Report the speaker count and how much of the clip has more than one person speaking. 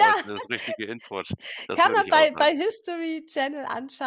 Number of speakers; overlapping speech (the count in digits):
2, about 24%